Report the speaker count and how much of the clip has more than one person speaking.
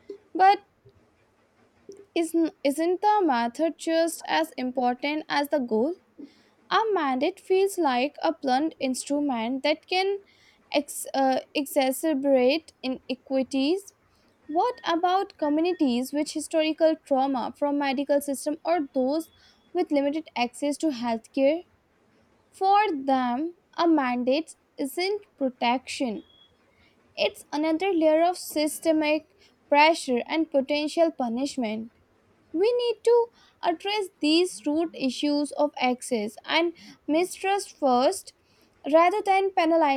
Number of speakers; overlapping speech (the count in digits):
1, no overlap